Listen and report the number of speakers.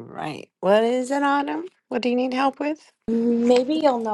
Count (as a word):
two